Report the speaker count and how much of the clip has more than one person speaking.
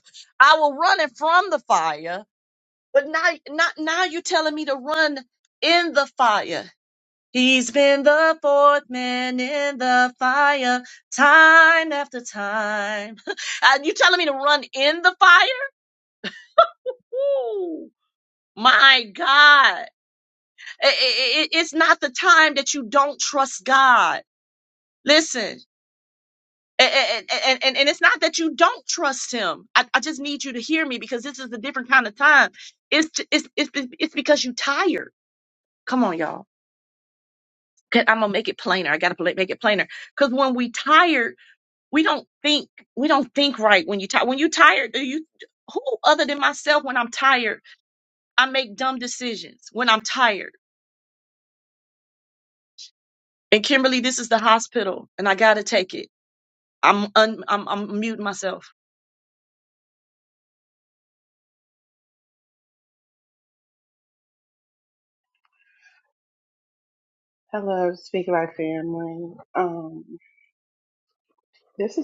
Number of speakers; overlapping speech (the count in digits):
2, no overlap